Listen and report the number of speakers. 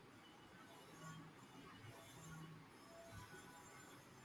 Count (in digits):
0